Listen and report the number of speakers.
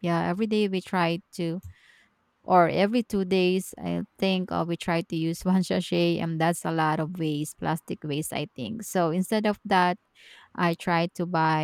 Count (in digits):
1